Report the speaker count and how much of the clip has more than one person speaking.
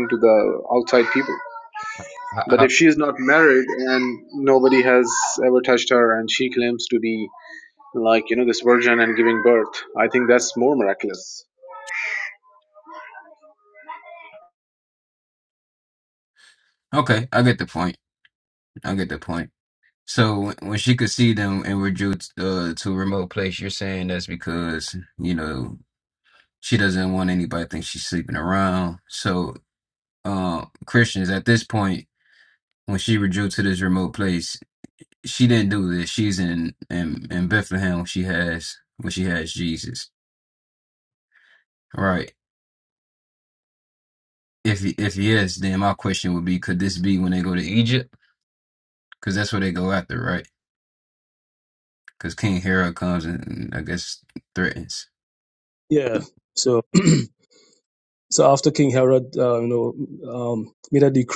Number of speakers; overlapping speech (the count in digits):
3, under 1%